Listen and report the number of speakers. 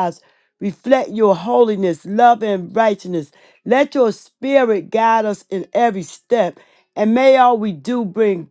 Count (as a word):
one